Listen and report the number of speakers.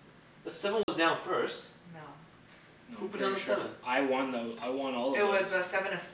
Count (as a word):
three